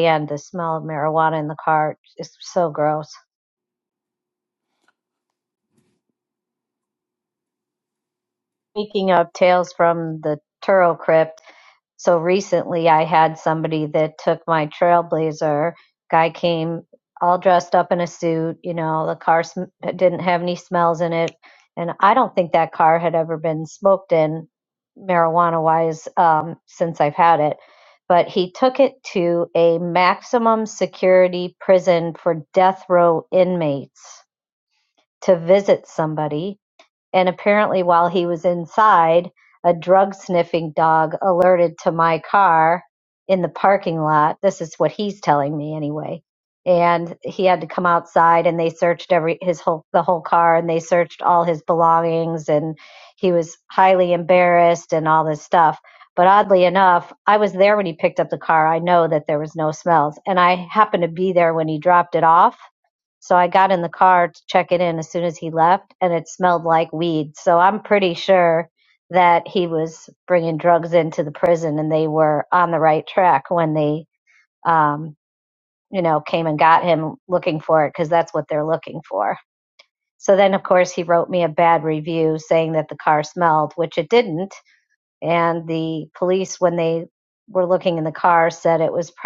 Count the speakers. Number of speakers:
one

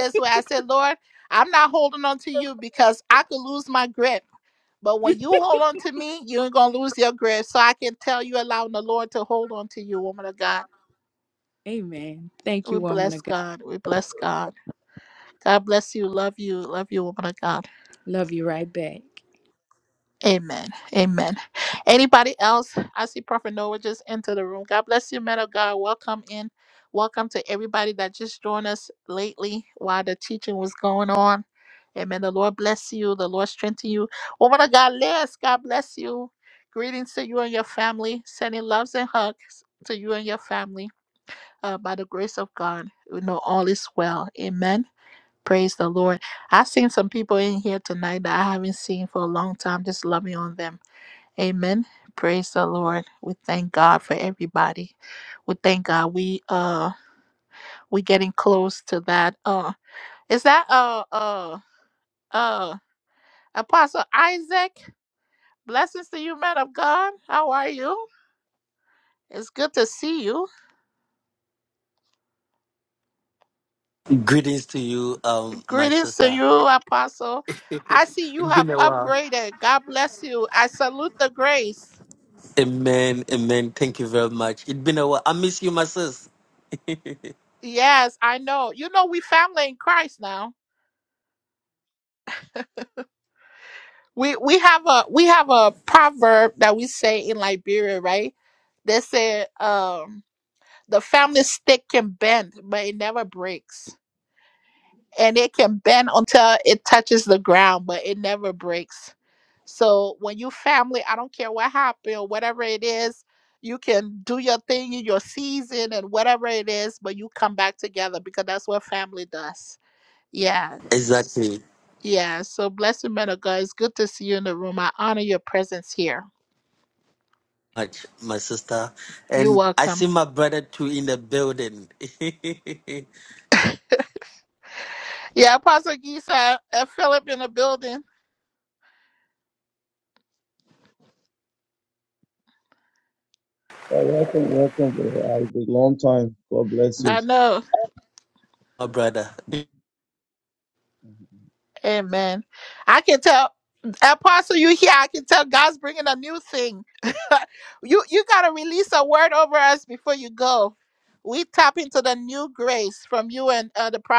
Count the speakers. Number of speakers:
four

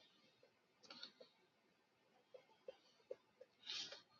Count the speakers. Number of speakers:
zero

